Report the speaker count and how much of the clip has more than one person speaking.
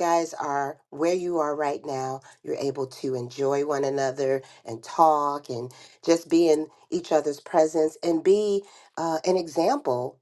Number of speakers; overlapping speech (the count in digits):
1, no overlap